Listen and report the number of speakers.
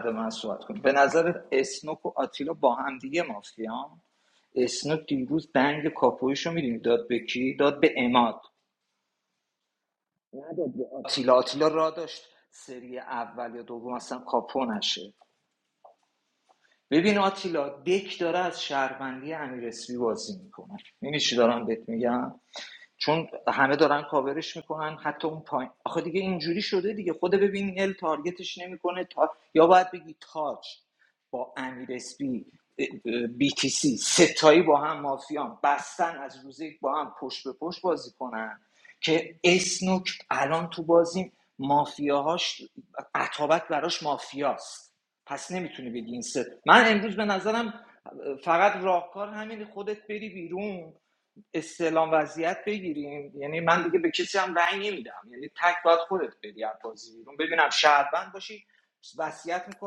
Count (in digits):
1